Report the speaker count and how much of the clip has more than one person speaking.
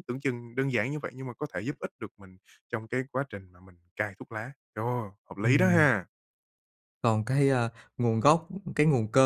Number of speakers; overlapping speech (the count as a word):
two, about 4%